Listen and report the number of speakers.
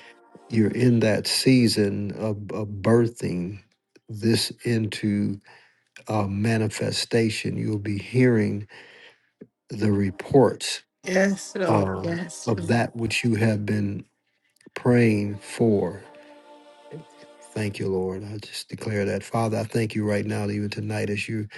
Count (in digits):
2